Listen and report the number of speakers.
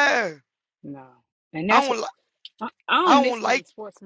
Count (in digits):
2